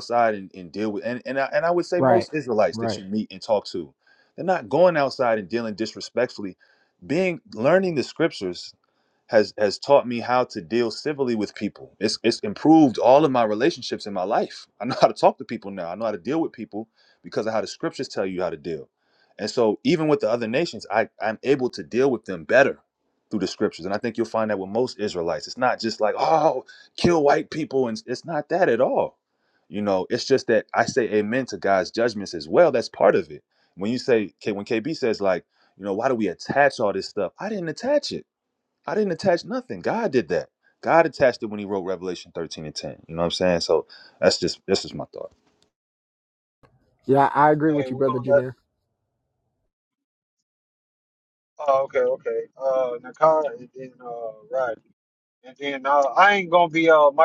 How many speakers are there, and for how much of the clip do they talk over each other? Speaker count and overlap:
3, about 2%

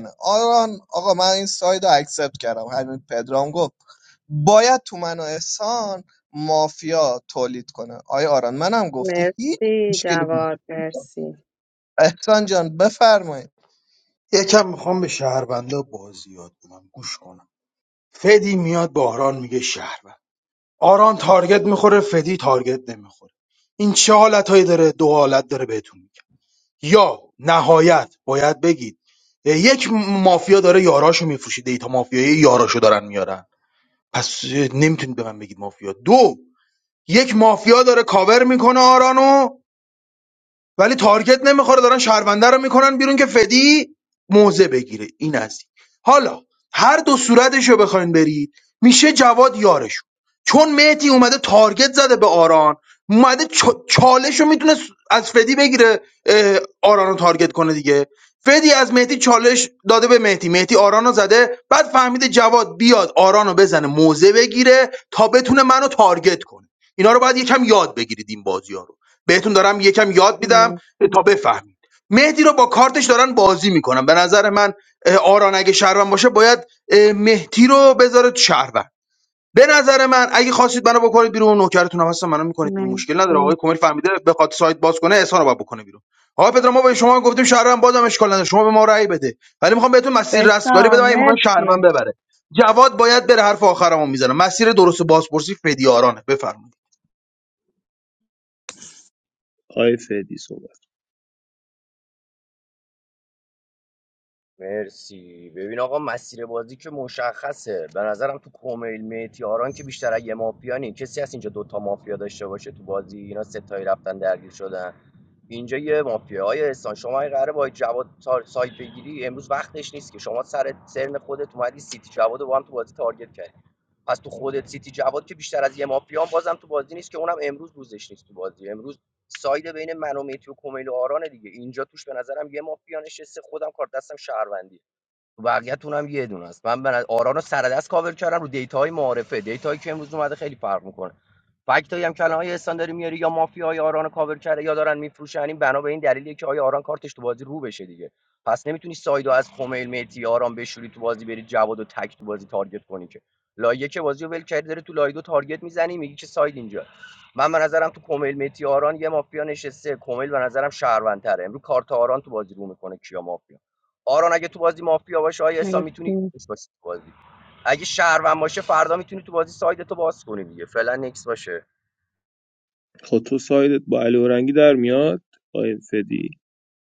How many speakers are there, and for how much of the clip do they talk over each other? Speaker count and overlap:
5, about 2%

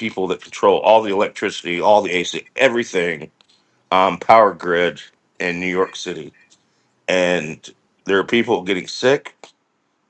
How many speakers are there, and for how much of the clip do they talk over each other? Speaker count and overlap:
1, no overlap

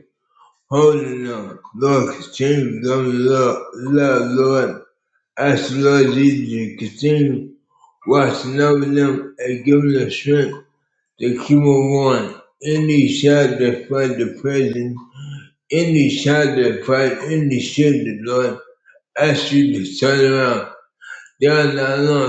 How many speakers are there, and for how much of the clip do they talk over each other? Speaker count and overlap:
1, no overlap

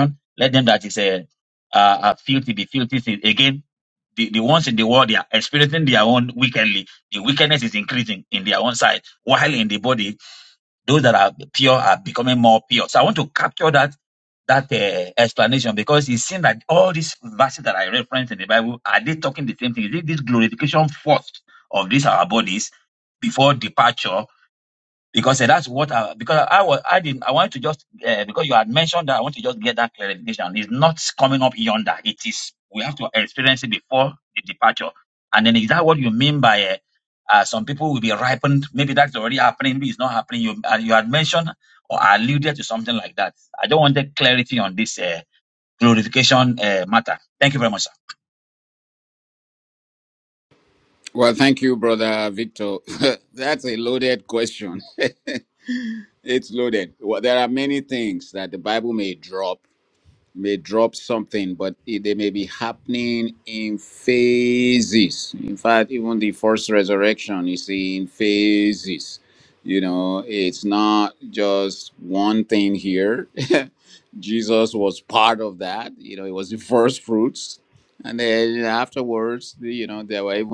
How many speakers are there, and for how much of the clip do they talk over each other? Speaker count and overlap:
2, no overlap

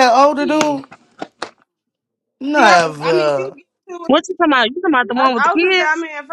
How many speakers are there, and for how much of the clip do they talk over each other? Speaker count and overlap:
3, about 33%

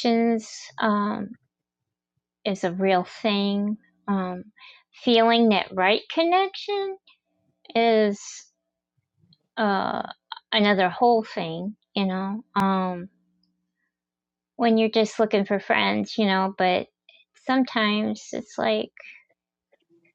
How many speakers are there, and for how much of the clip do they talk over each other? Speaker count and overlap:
1, no overlap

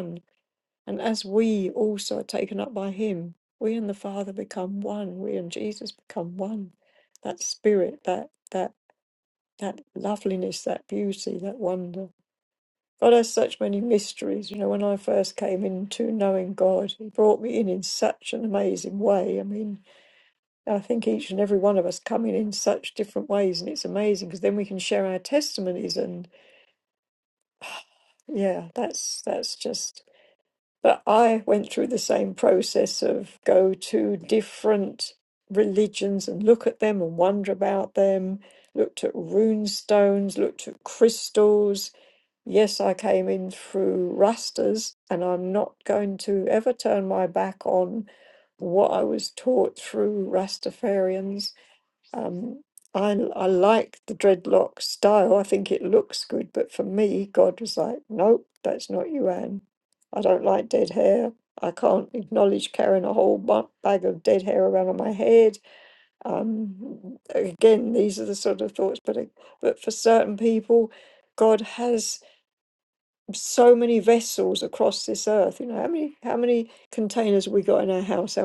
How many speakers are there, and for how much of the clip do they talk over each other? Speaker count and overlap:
1, no overlap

